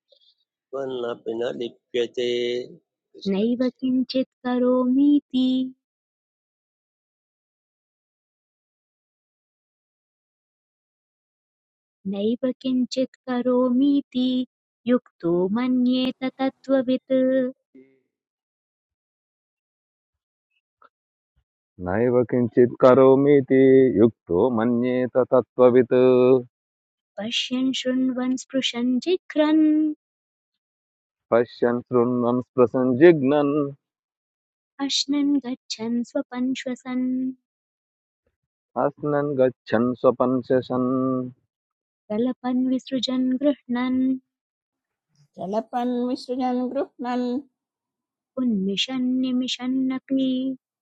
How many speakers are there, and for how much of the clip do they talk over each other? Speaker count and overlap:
4, under 1%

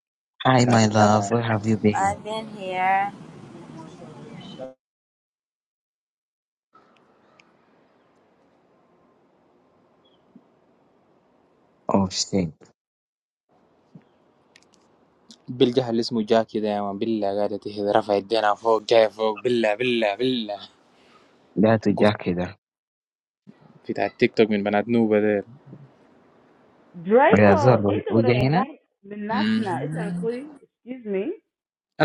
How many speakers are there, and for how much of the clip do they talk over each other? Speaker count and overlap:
4, about 6%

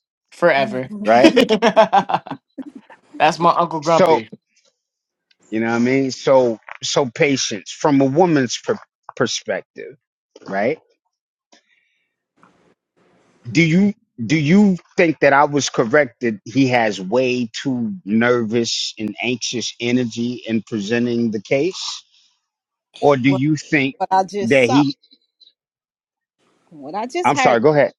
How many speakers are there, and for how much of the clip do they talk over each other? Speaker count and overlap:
3, about 5%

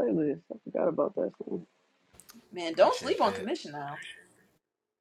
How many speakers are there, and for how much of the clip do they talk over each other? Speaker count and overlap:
2, no overlap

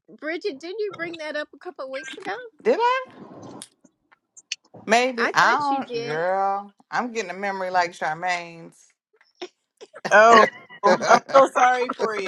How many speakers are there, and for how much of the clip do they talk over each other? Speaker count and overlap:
3, about 8%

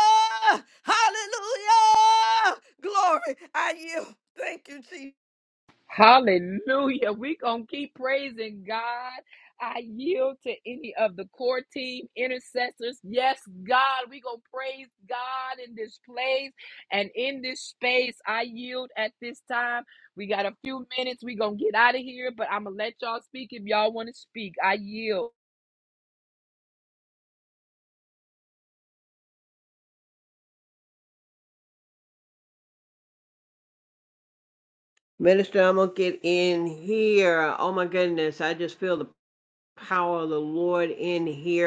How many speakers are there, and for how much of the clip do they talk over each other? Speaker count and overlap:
3, no overlap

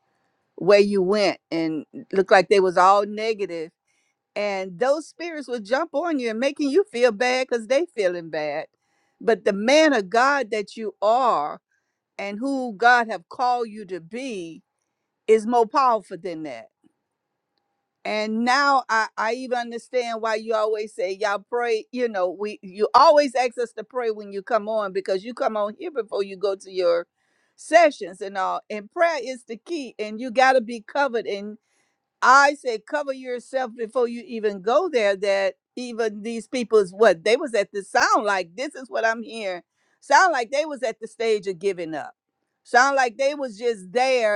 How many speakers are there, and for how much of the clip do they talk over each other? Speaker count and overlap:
1, no overlap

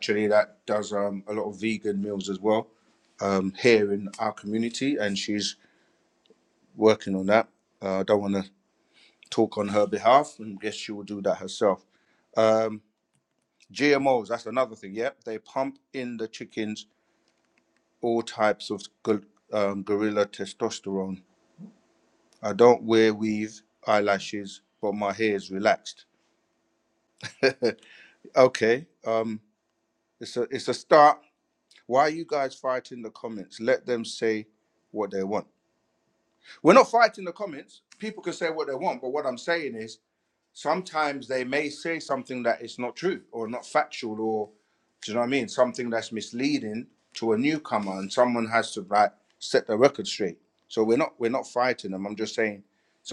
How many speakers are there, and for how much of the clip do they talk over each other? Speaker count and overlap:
1, no overlap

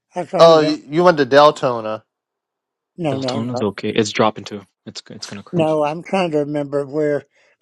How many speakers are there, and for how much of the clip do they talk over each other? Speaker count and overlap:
3, about 10%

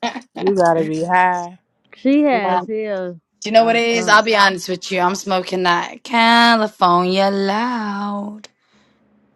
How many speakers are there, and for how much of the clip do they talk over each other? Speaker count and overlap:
3, about 10%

